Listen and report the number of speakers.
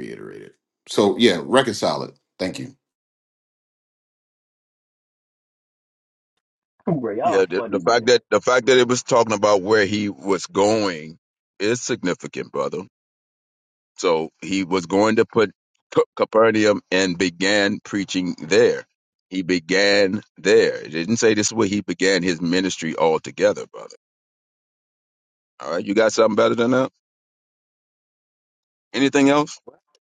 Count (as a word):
three